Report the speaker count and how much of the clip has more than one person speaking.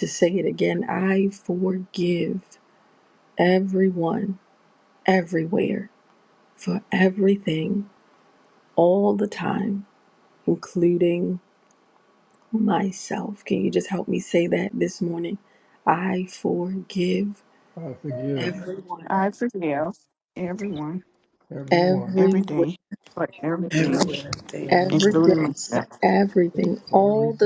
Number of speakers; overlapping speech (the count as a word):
four, about 13%